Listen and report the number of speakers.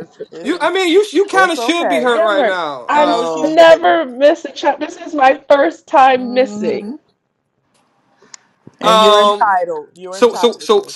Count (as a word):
three